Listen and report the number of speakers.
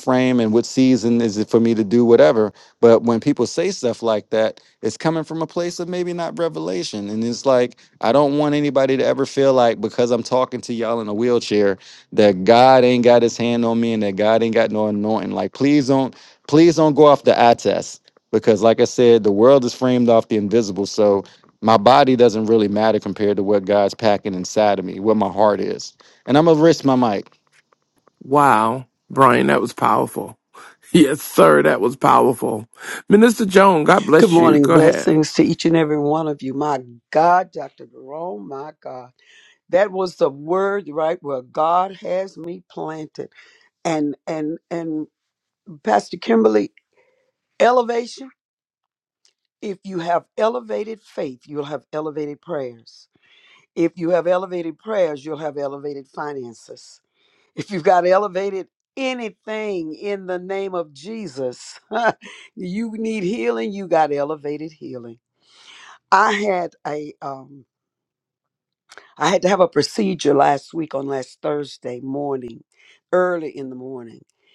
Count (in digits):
3